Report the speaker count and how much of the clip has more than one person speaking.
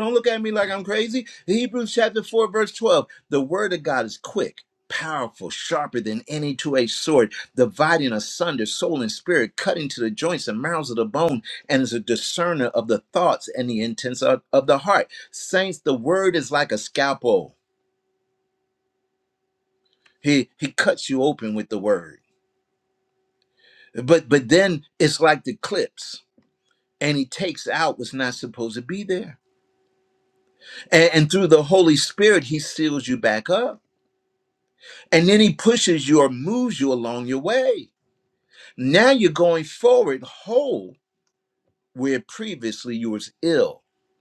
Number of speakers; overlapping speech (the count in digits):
1, no overlap